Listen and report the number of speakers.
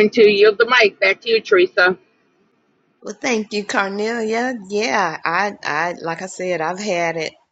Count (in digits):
2